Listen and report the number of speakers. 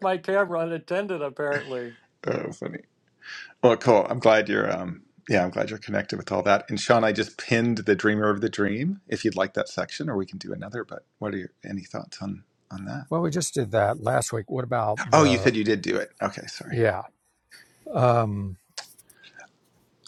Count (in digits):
3